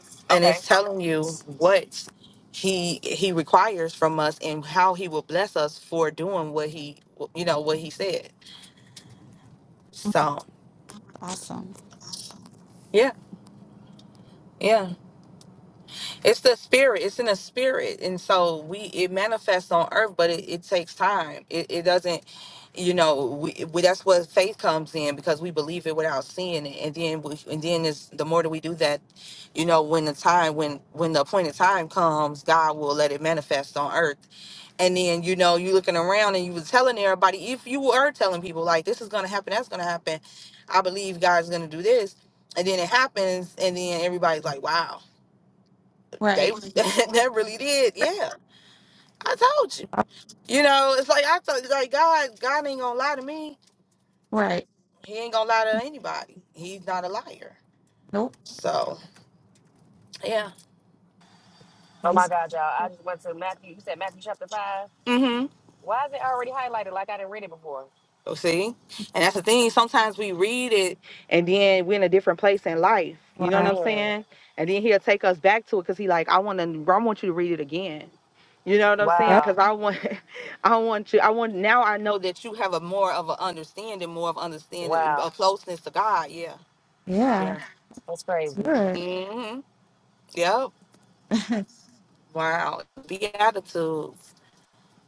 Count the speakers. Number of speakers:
3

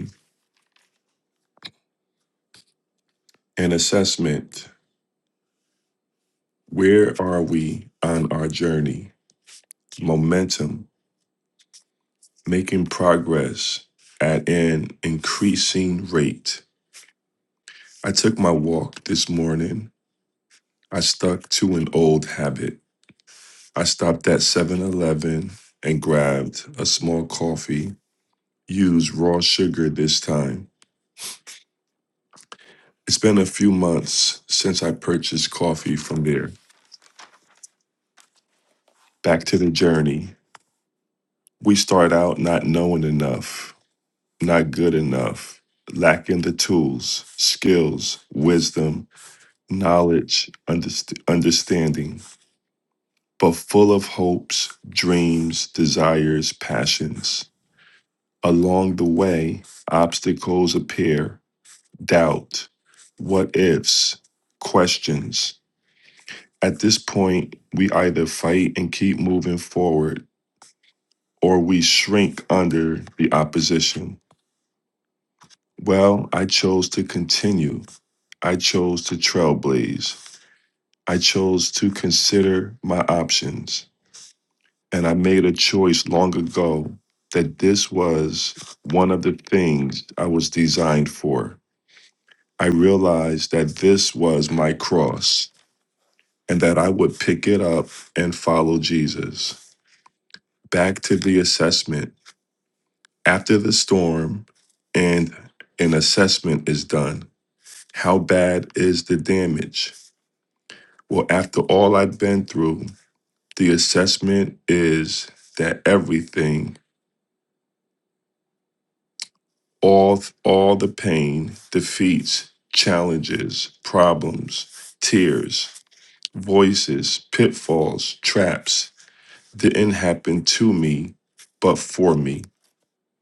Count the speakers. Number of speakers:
1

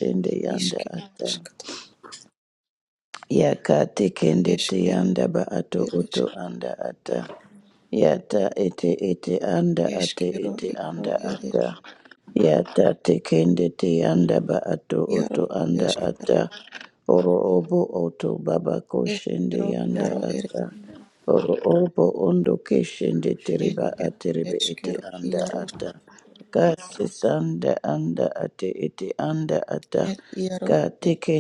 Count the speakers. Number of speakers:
2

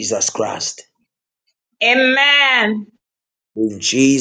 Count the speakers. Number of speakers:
2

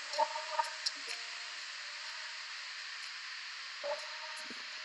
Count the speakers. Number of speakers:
0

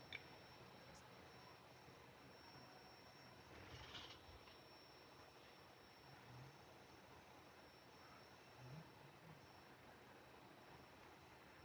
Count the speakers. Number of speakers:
0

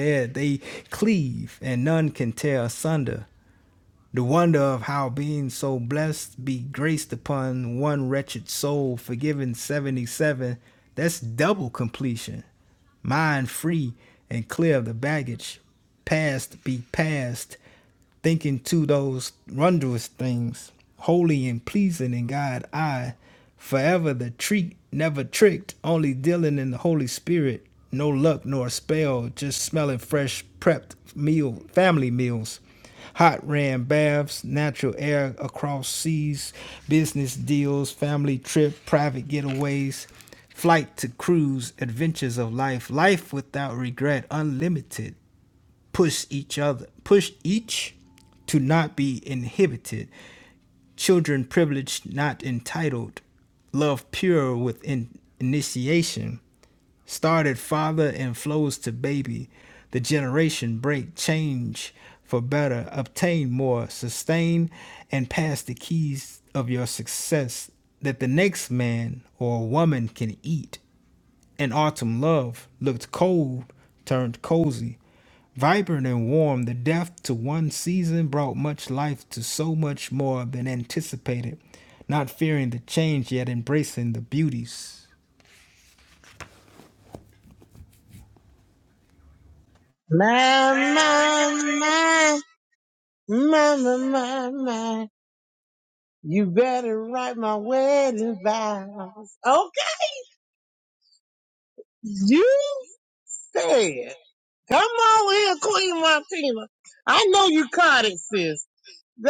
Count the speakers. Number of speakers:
2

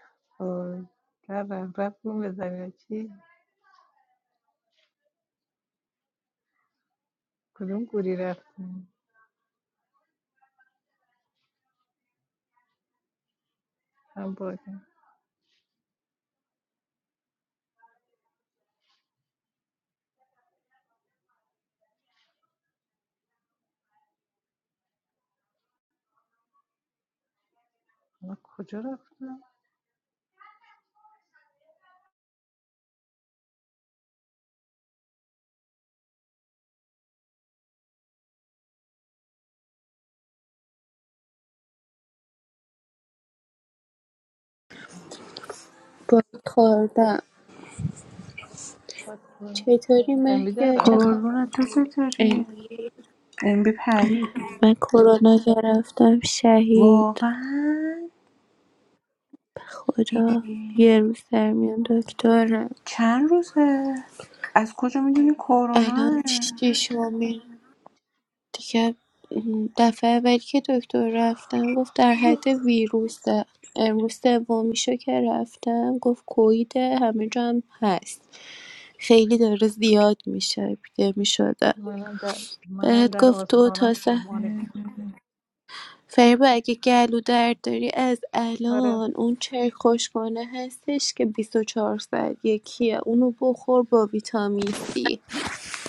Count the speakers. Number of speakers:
3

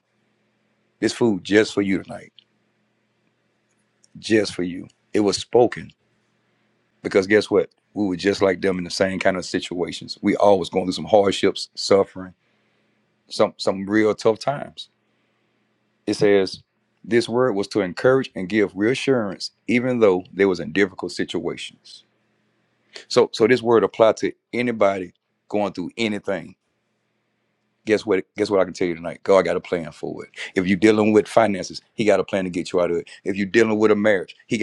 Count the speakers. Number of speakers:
1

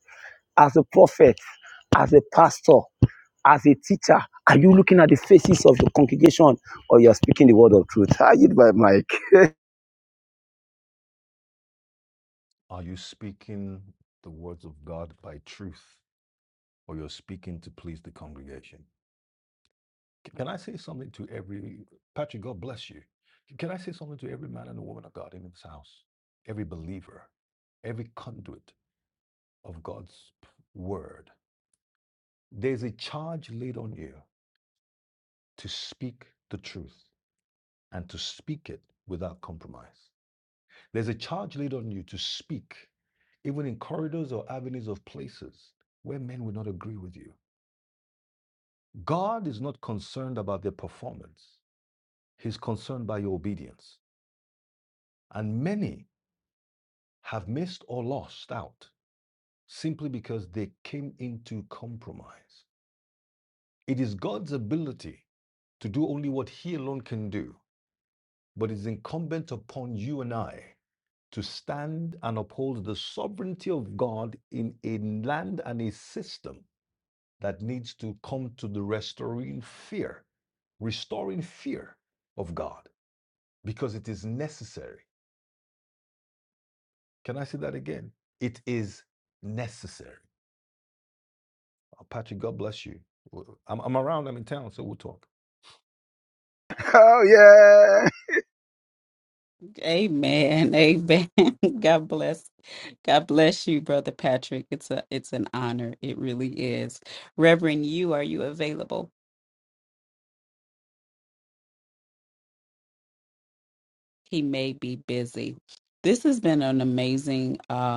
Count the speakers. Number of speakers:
3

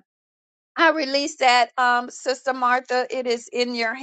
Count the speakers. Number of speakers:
1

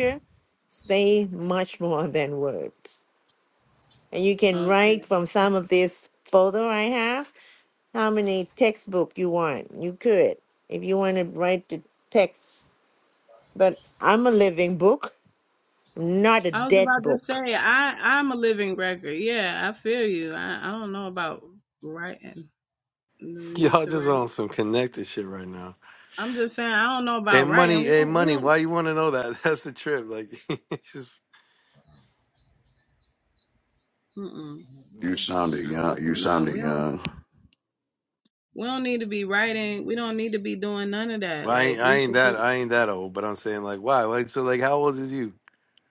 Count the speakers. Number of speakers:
4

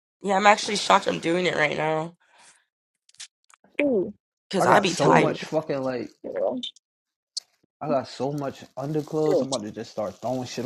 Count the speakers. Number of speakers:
3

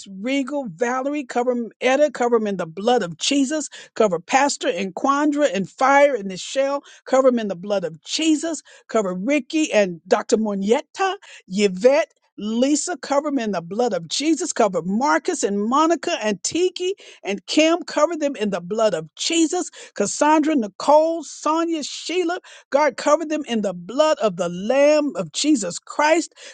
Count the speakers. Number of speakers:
1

